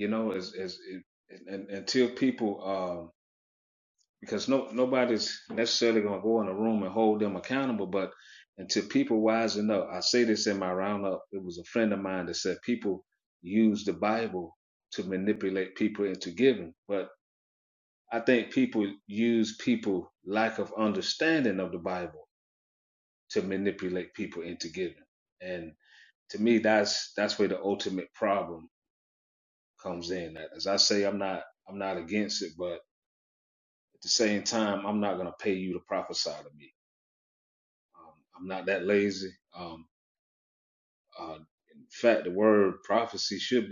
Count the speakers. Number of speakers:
1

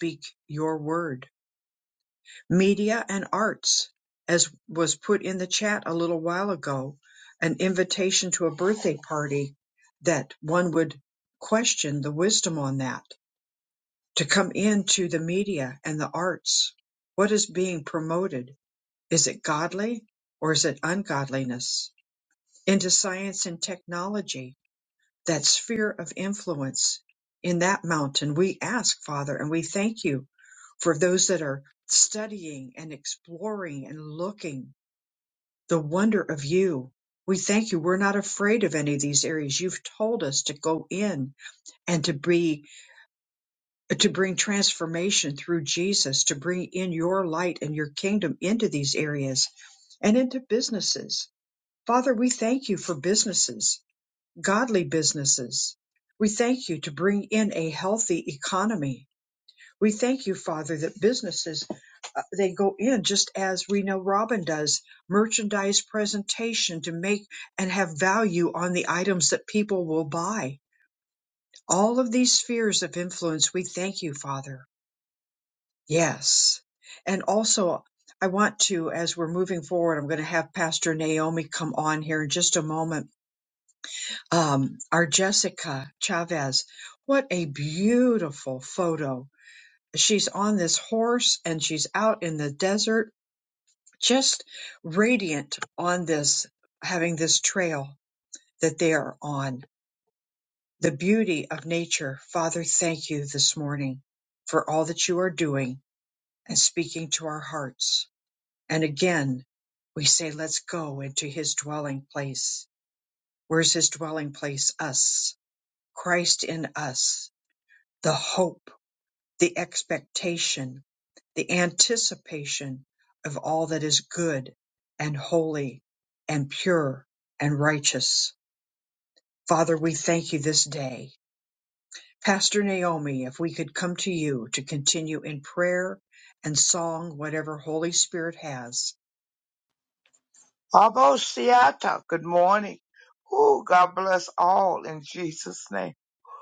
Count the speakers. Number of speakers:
2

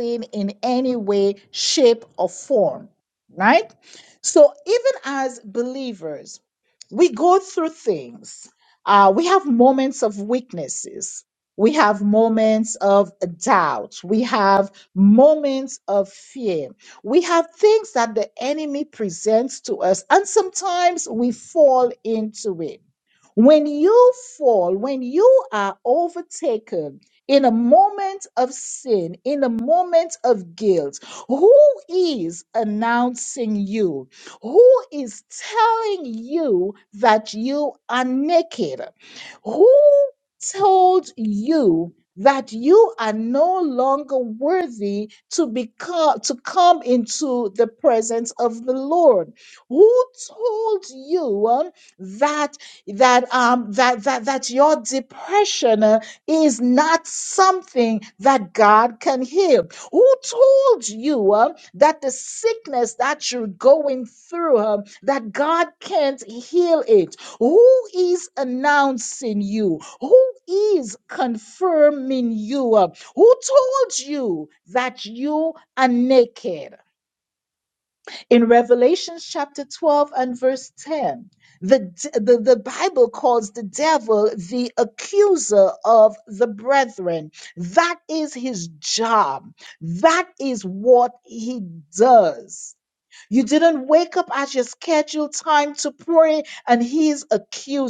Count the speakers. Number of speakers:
1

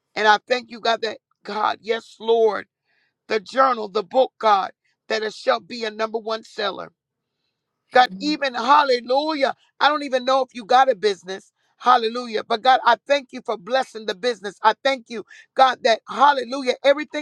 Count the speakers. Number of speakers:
1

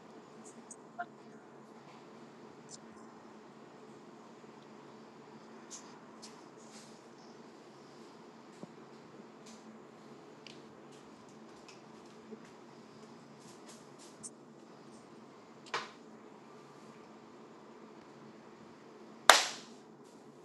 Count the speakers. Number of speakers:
0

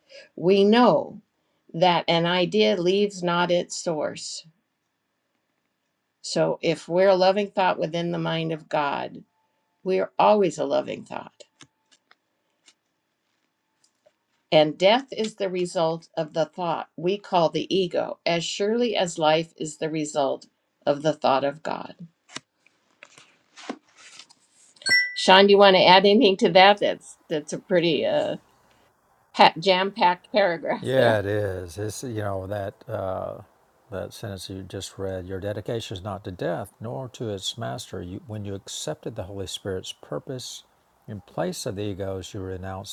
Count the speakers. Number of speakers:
2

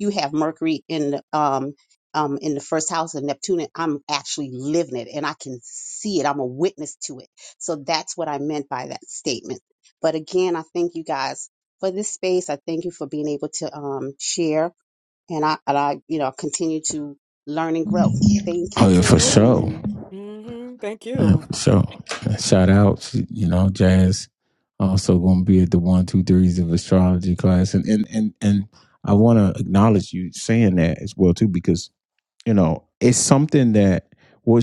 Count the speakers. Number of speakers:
3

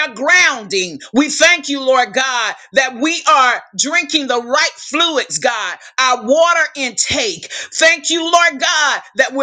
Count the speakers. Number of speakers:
1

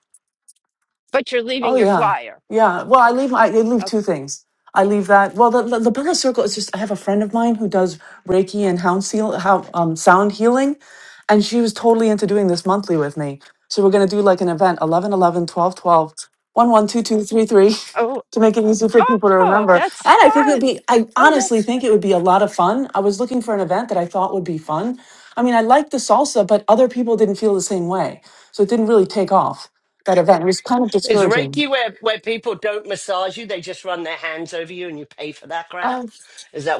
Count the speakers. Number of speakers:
3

